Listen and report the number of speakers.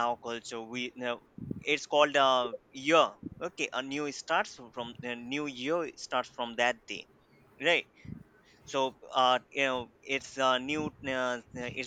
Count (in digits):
1